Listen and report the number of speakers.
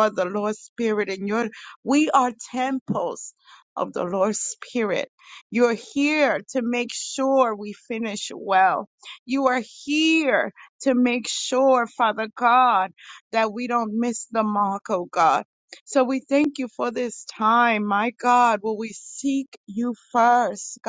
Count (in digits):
1